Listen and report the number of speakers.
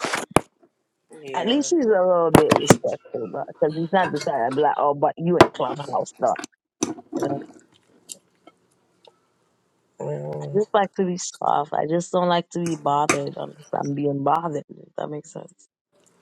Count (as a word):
two